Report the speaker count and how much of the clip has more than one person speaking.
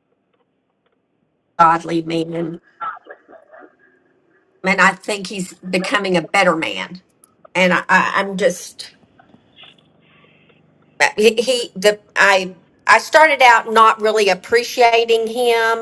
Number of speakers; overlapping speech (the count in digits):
1, no overlap